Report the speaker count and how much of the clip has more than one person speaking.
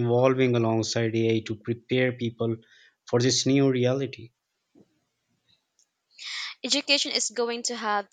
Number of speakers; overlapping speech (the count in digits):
2, no overlap